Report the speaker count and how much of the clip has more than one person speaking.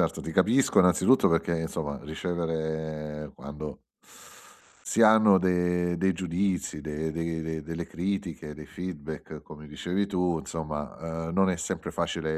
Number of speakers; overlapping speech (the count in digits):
1, no overlap